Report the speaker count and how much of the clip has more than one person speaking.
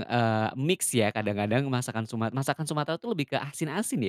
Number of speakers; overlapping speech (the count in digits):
1, no overlap